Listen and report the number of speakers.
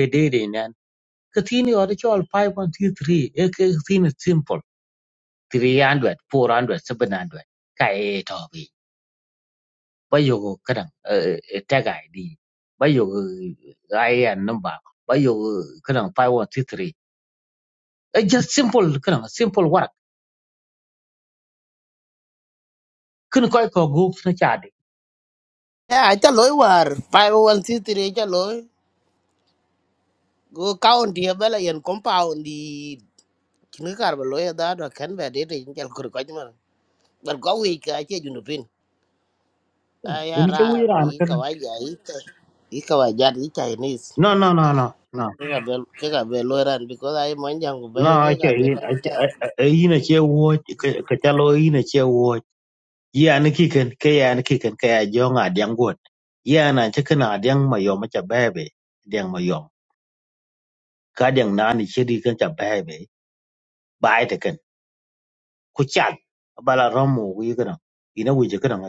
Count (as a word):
two